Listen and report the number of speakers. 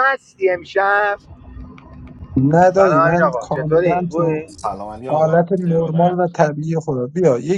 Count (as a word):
three